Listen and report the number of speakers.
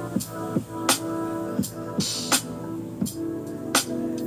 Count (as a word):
zero